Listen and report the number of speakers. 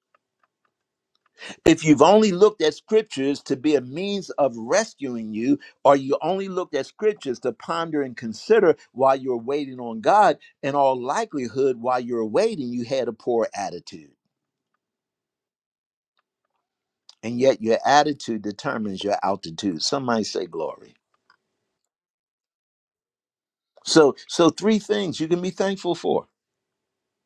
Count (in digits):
1